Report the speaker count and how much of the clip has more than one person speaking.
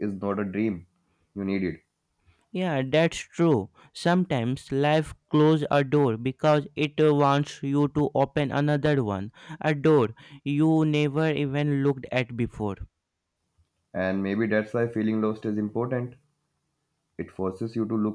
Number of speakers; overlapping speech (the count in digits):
2, no overlap